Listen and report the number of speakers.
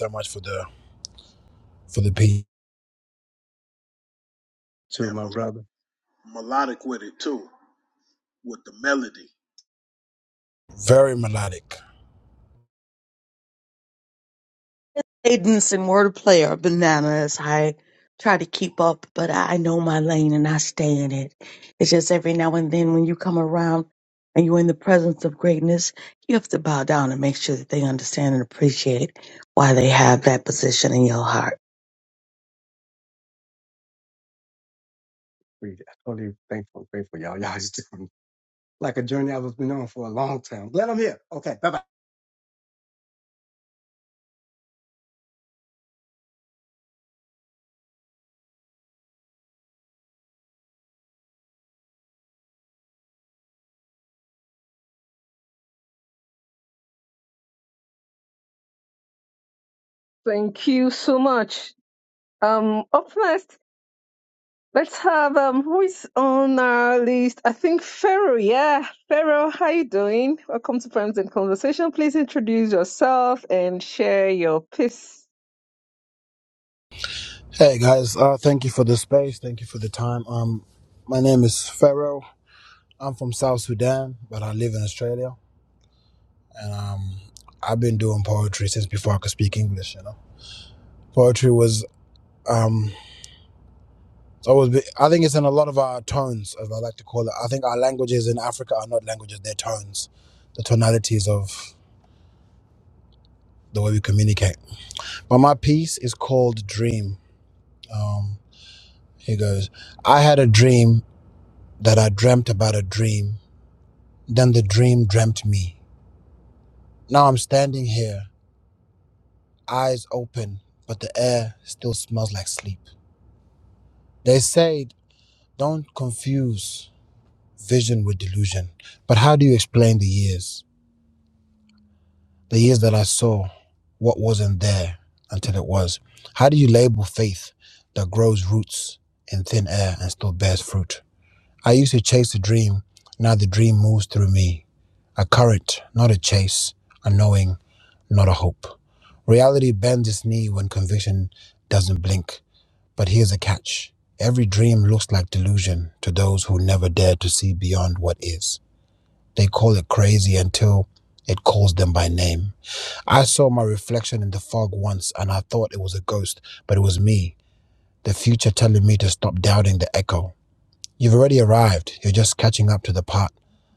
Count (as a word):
five